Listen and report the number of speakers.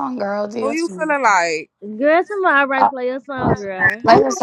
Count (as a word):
three